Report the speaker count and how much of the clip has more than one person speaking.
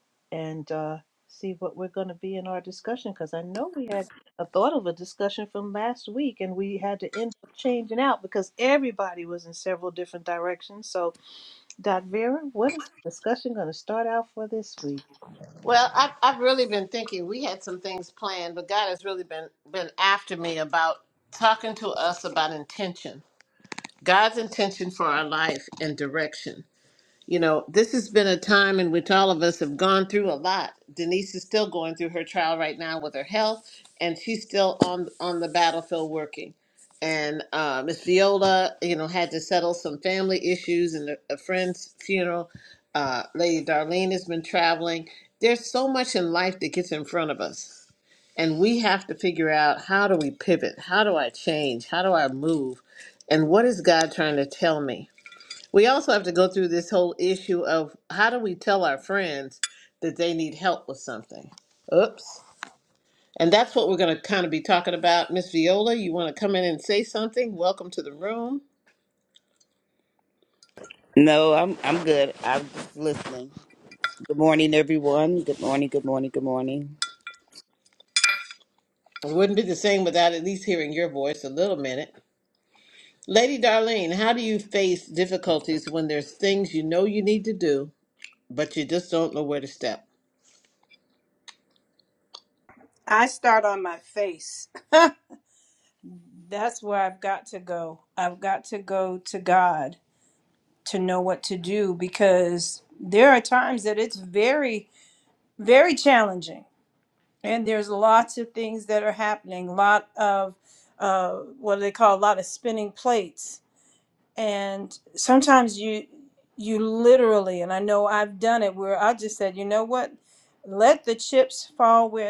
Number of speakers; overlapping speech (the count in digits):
4, no overlap